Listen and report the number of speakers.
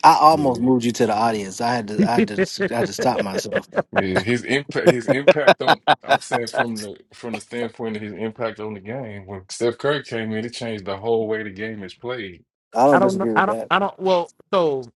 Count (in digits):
3